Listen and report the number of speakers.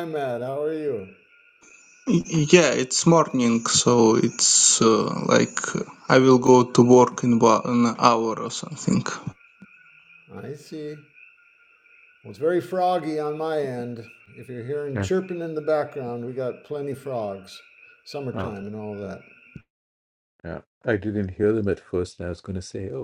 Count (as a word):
three